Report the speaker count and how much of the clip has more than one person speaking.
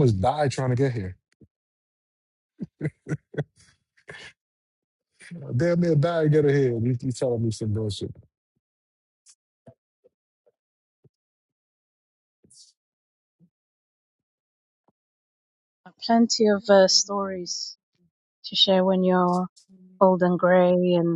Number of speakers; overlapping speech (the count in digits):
2, no overlap